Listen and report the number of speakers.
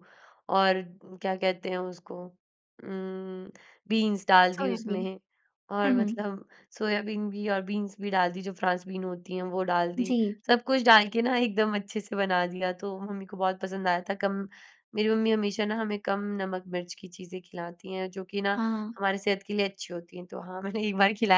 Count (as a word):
two